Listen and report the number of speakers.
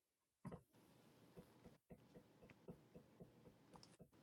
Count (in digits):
0